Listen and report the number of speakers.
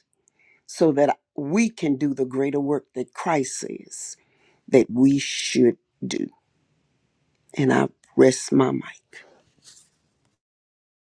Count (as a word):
one